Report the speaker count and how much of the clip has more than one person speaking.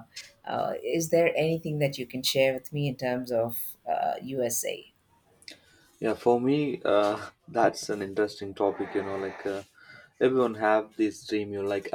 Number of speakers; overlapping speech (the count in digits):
2, no overlap